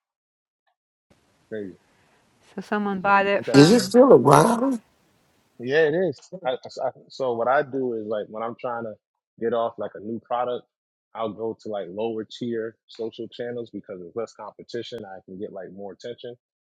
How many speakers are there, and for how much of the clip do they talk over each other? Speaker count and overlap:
3, about 3%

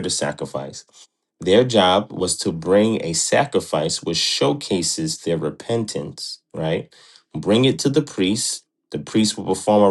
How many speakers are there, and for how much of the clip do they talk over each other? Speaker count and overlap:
1, no overlap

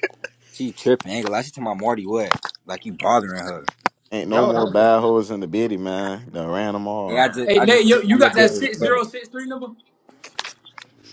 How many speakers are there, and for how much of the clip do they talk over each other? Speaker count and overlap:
3, about 20%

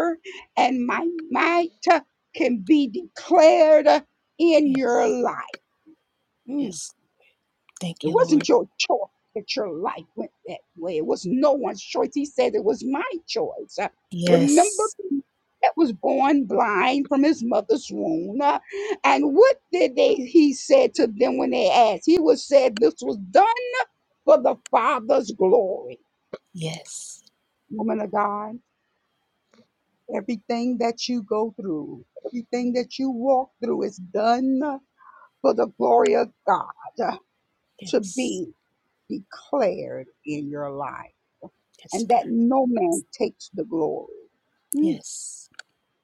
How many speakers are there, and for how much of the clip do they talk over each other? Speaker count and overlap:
2, about 3%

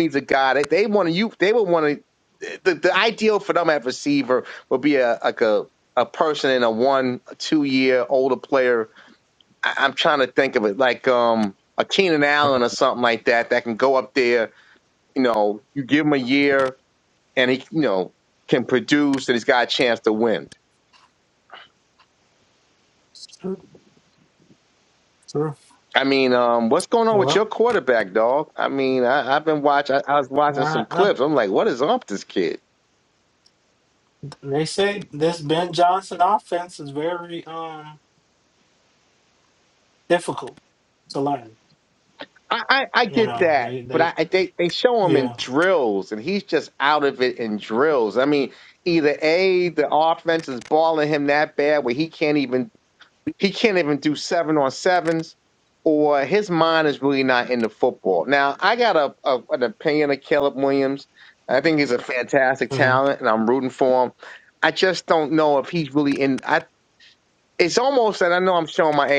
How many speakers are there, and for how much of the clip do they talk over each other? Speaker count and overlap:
2, about 4%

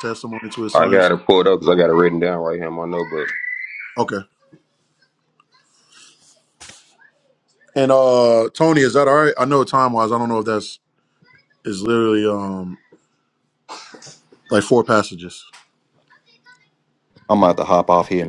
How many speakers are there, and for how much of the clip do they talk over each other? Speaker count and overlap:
3, about 2%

